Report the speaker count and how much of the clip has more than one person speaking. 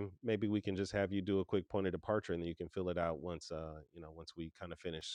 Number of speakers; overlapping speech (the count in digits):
1, no overlap